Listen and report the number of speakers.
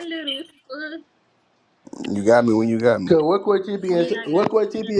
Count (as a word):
three